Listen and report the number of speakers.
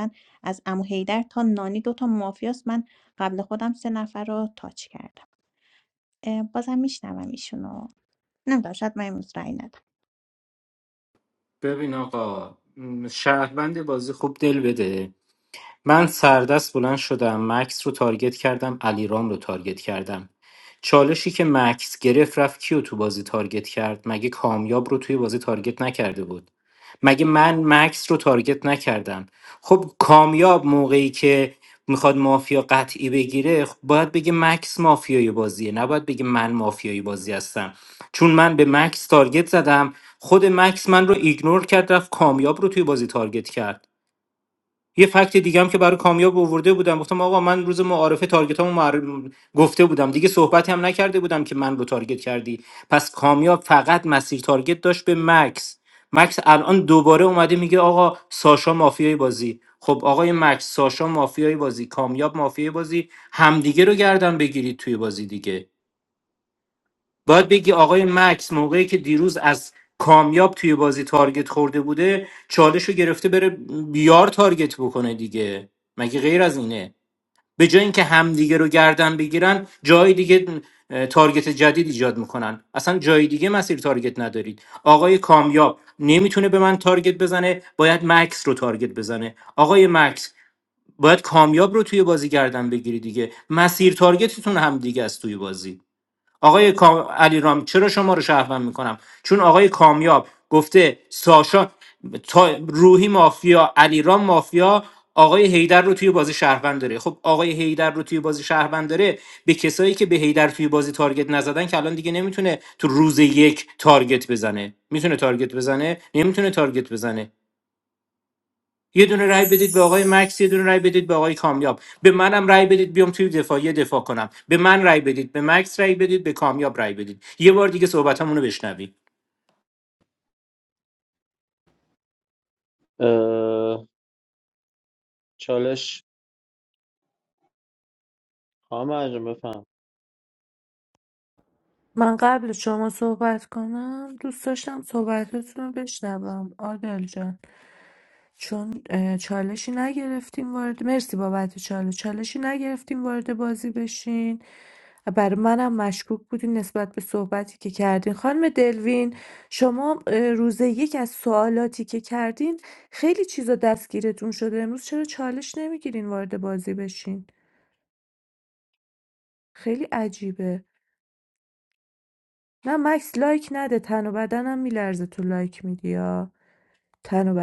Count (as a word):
four